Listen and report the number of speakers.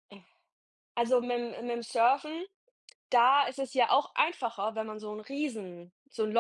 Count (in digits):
1